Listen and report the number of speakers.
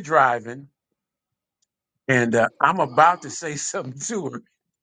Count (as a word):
one